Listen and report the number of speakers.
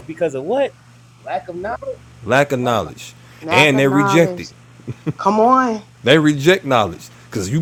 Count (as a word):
three